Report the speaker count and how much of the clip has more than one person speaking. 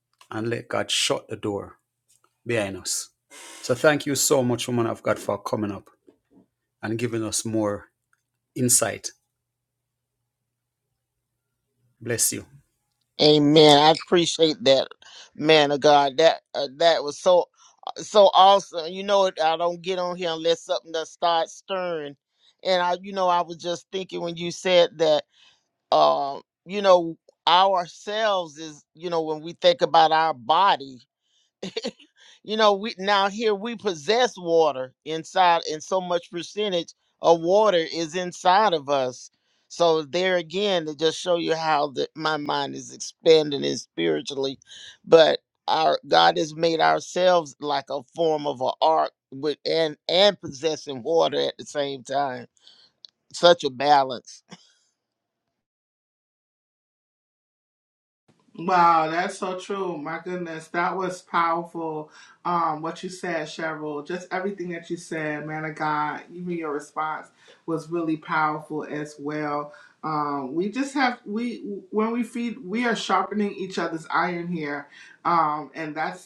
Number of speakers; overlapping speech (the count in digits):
3, no overlap